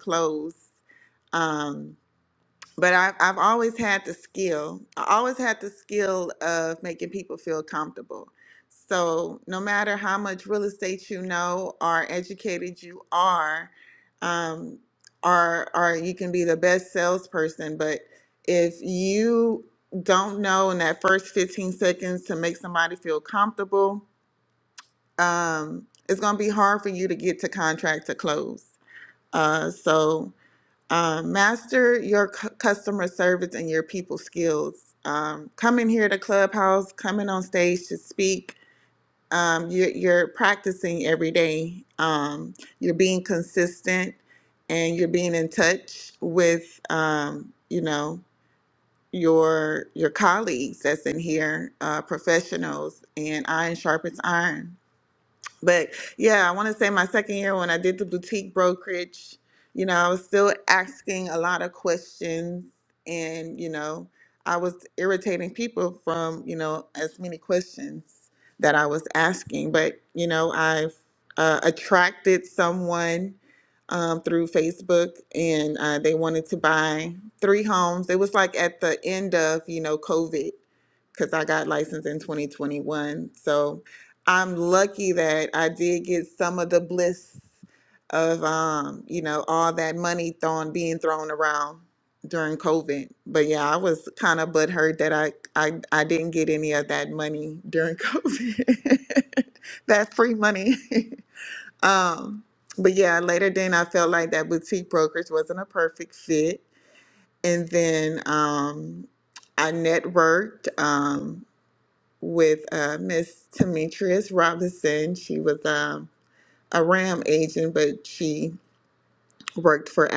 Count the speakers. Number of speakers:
one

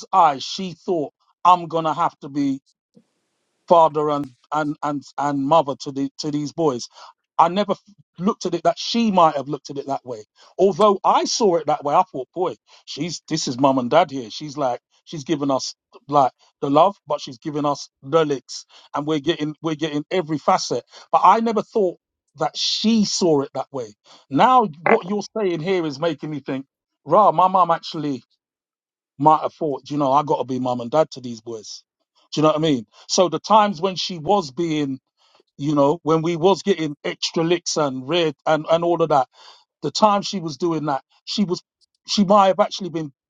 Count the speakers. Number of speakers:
one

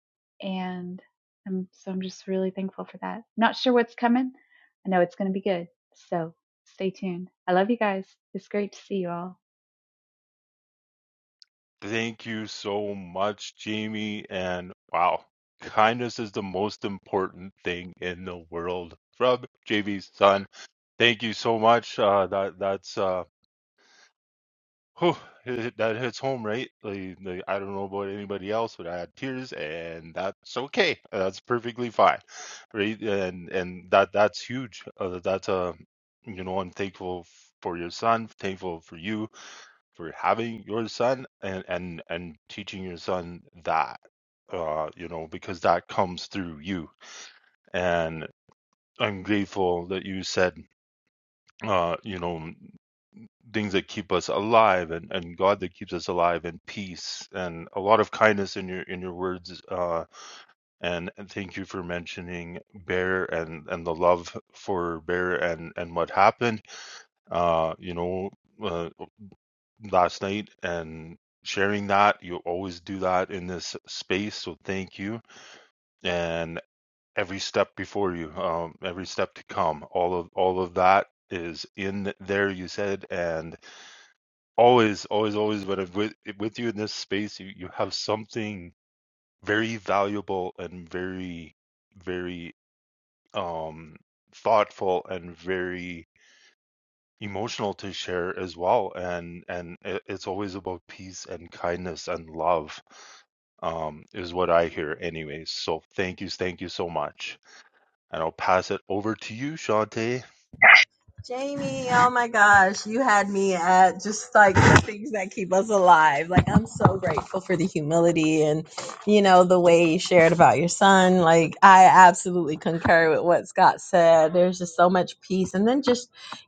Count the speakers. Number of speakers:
three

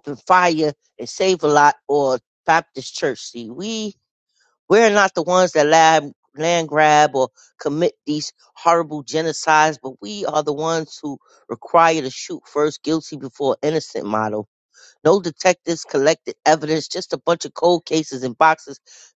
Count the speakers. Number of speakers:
one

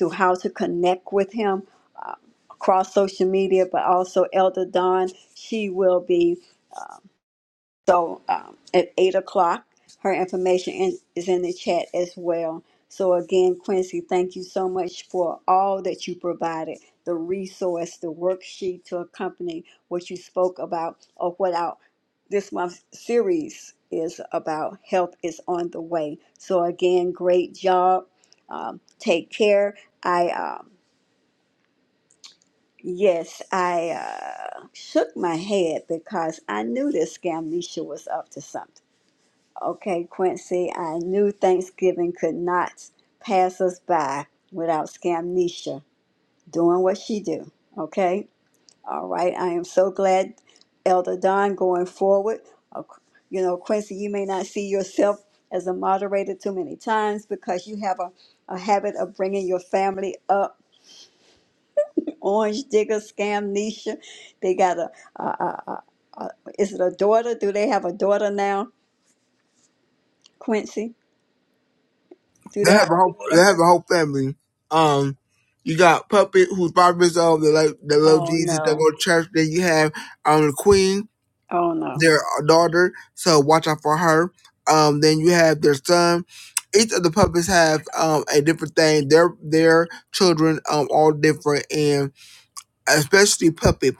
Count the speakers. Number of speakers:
two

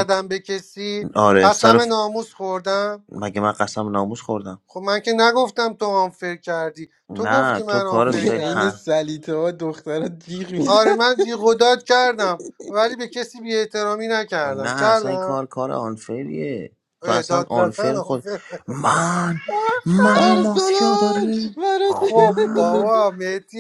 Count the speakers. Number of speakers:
three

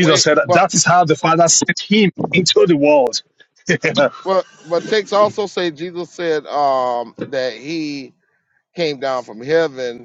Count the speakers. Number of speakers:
two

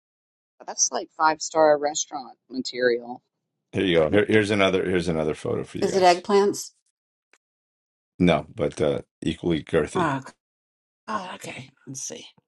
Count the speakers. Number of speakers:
three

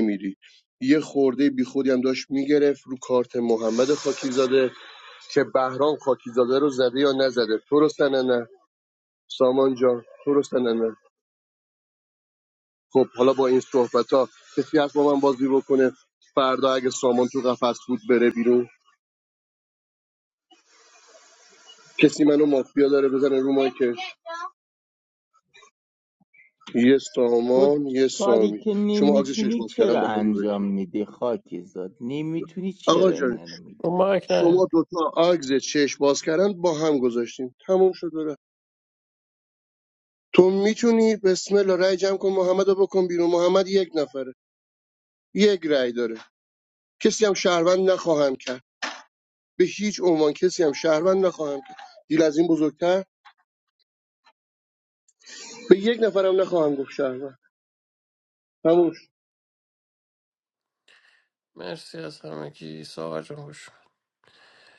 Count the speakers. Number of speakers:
three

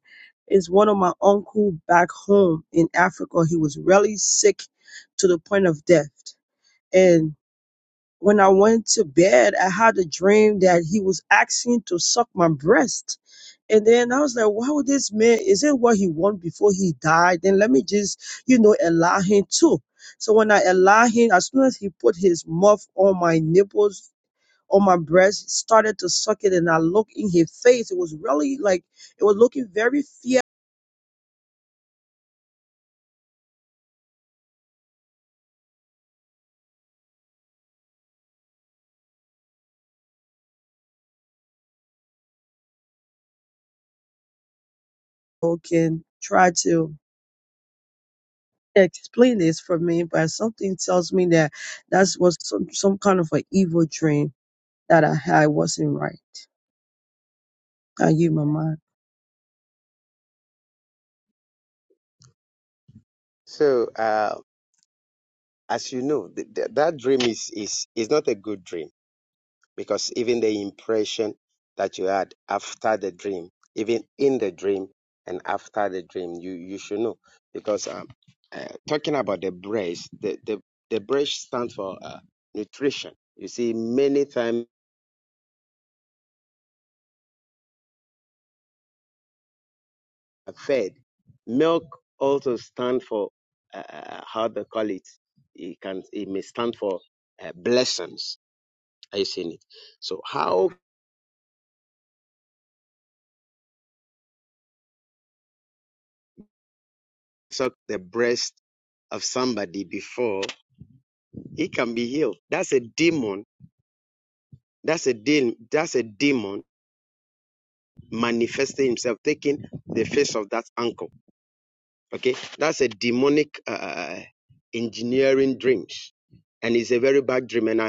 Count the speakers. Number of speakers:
two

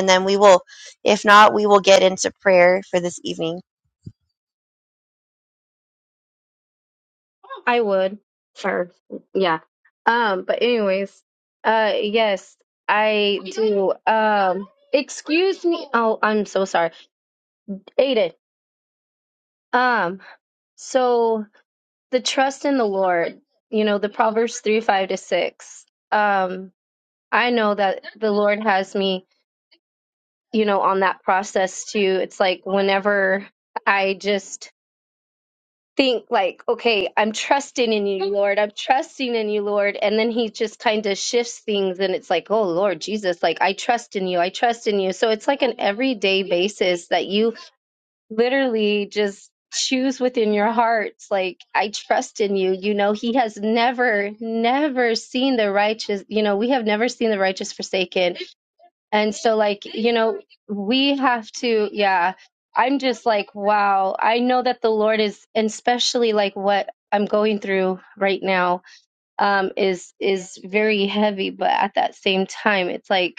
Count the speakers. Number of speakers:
two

